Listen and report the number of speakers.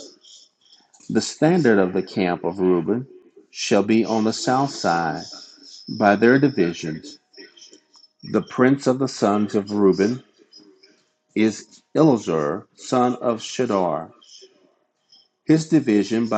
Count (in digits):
1